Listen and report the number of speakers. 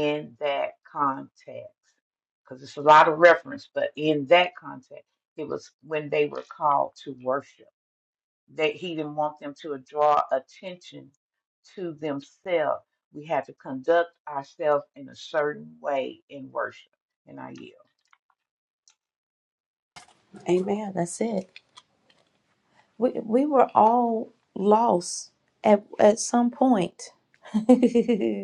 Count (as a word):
two